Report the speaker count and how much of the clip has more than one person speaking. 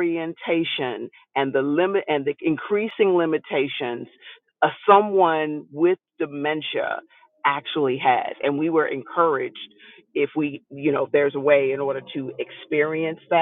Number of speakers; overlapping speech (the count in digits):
1, no overlap